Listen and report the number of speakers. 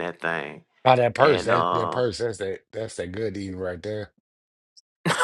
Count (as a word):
two